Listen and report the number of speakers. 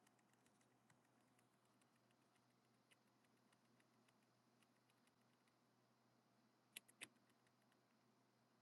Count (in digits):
0